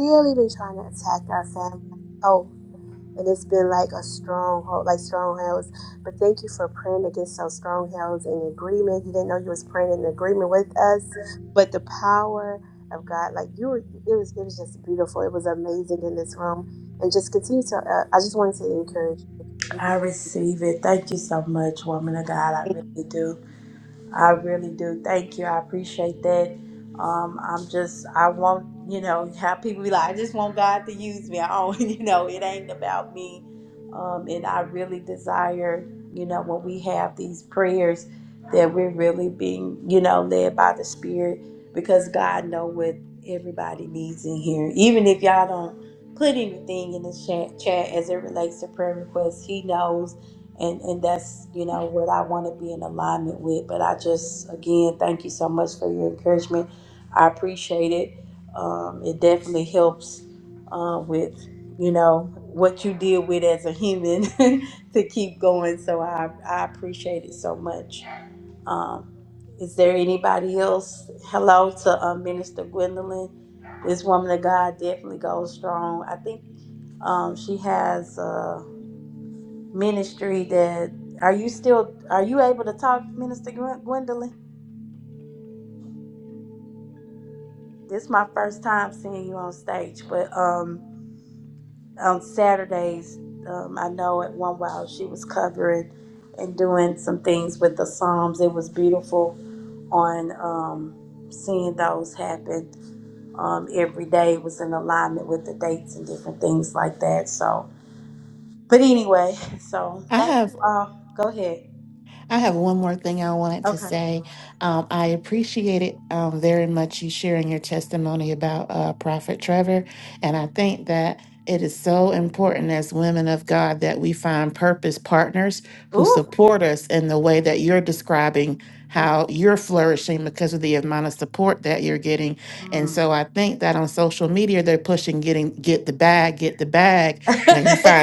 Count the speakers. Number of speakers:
3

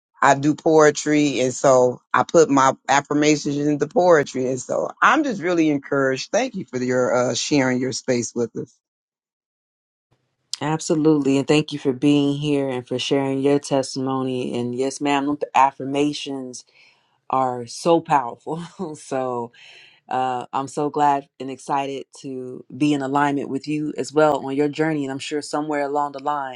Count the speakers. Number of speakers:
2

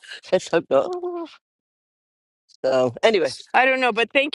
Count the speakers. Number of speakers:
2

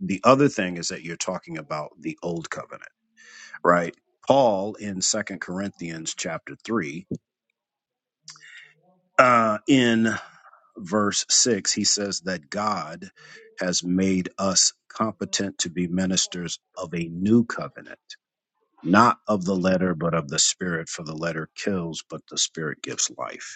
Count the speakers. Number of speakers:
1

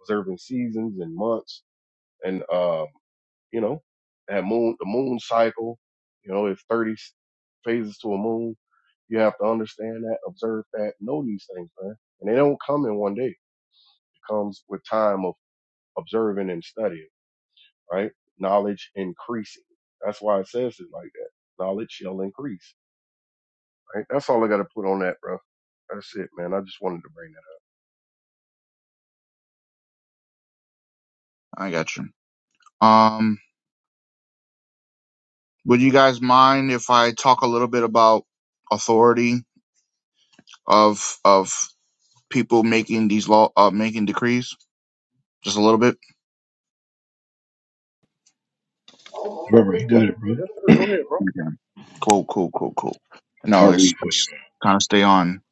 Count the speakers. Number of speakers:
3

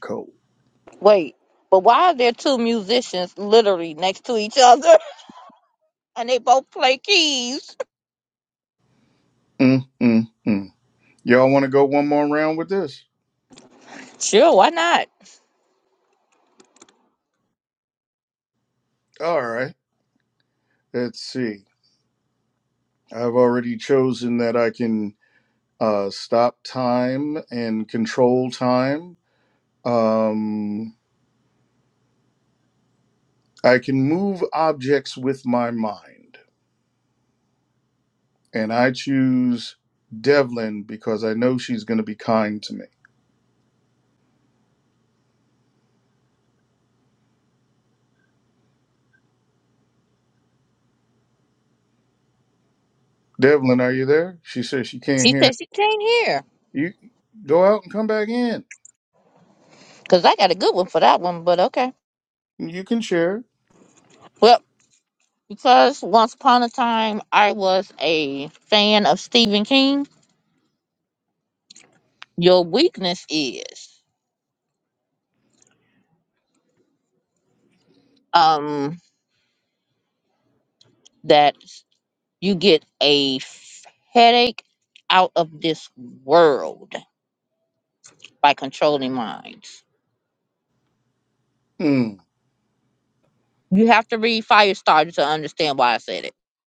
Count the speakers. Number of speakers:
2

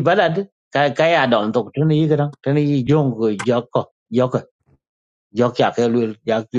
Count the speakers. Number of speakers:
1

